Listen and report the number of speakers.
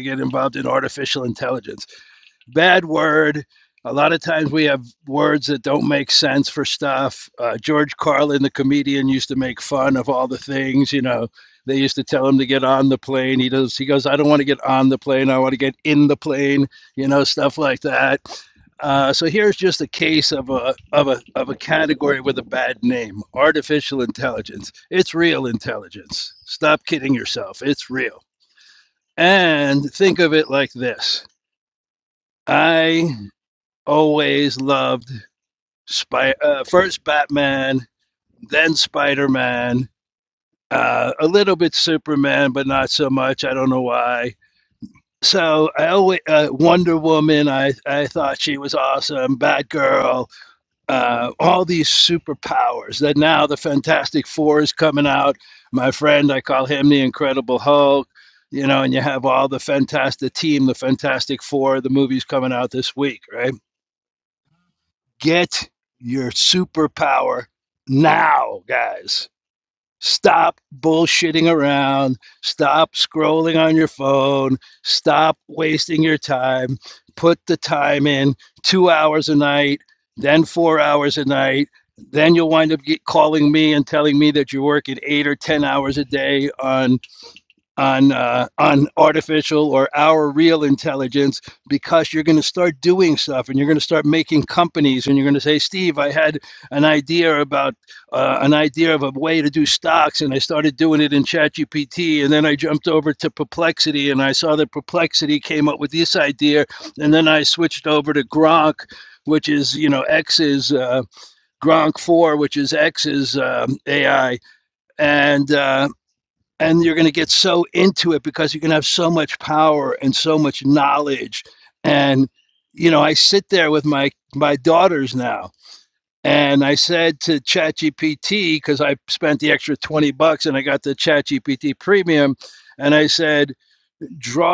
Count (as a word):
one